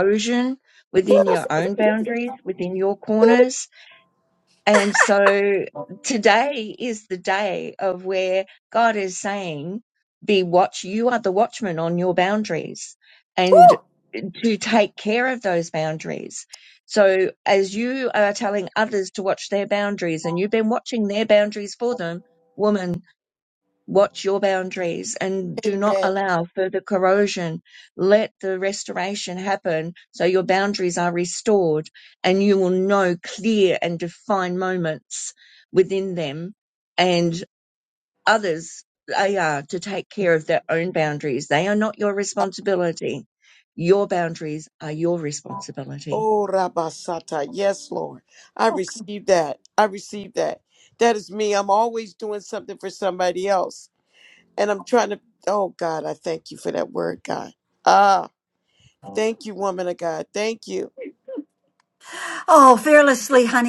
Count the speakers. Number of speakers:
3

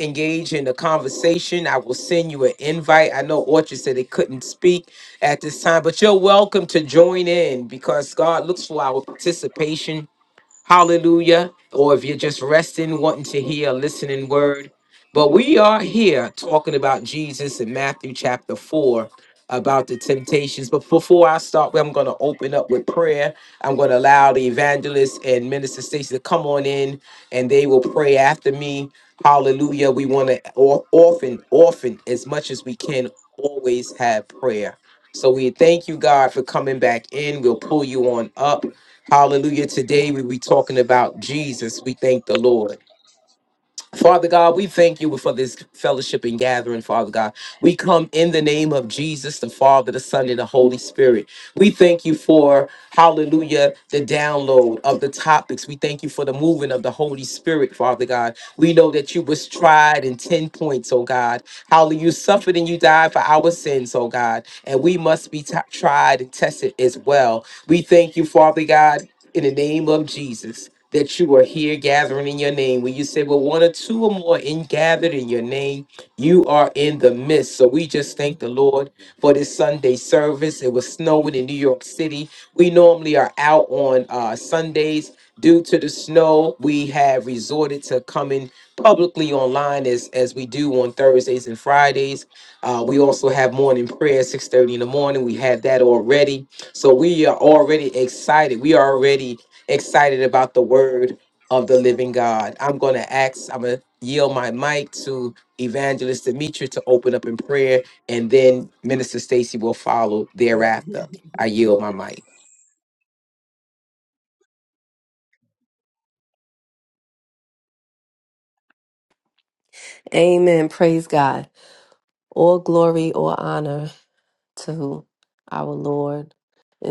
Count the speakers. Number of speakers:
2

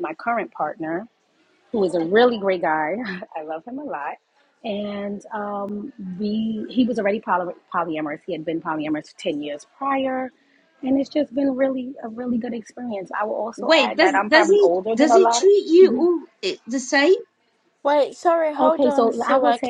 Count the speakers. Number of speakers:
3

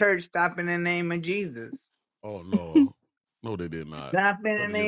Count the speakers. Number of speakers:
2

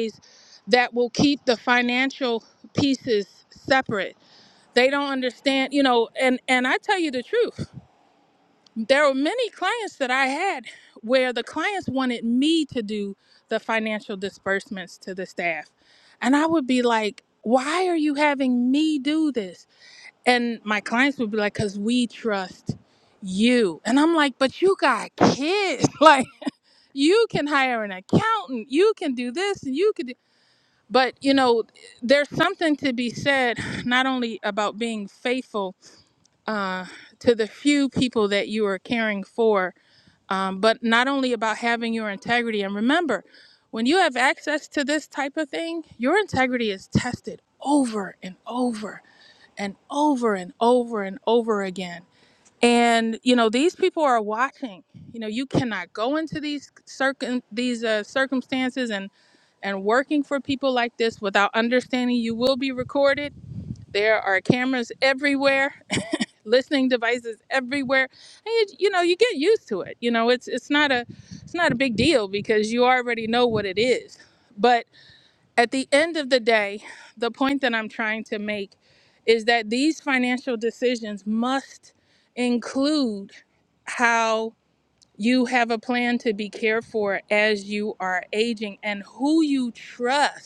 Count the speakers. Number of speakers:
1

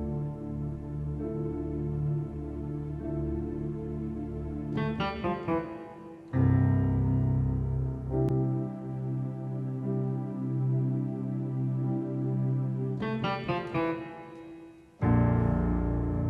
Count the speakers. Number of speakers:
0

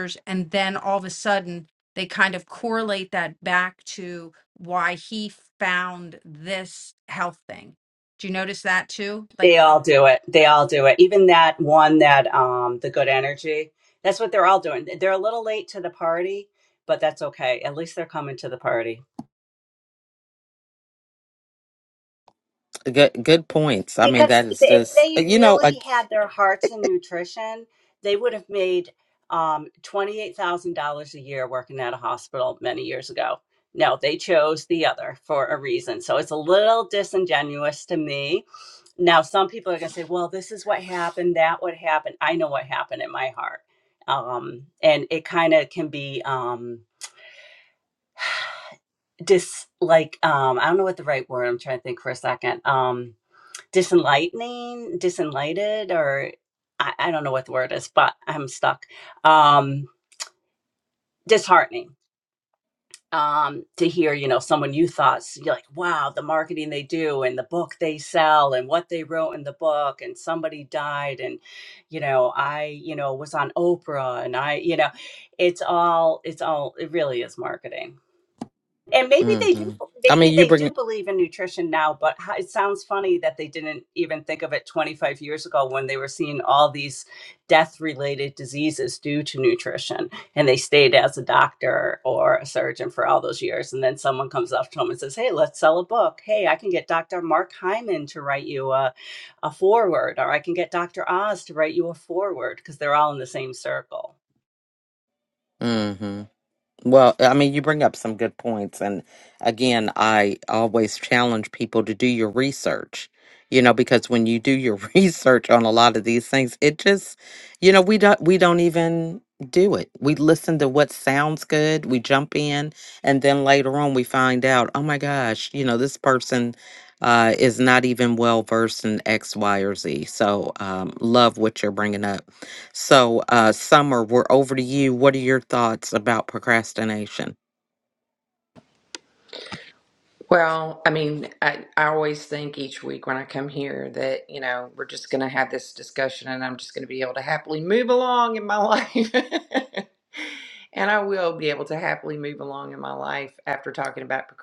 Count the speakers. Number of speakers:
4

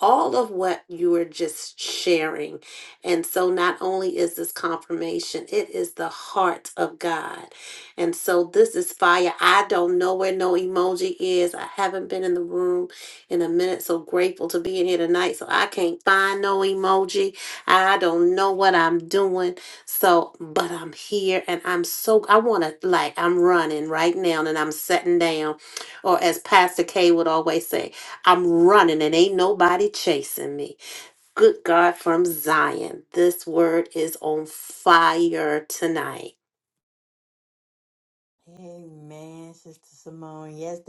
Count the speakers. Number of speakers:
2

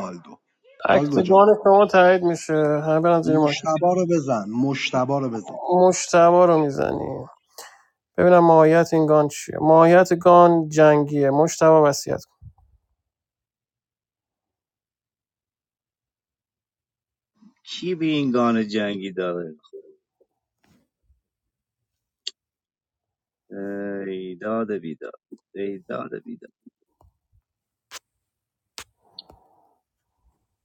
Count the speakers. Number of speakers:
3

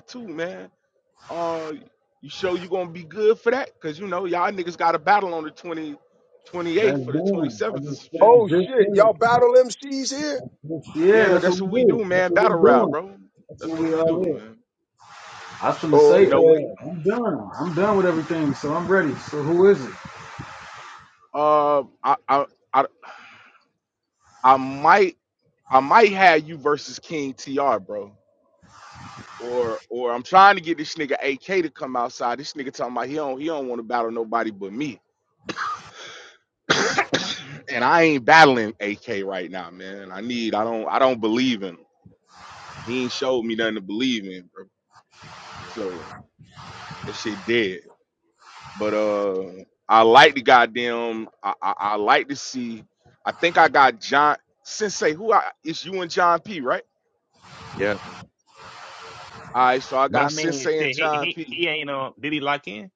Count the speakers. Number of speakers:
4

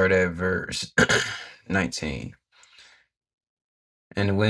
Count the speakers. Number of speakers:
1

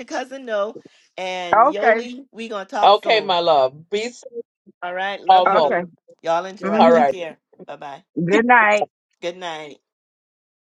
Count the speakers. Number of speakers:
3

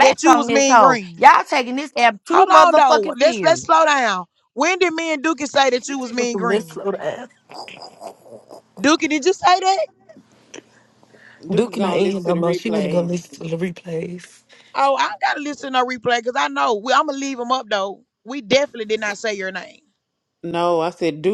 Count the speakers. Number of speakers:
4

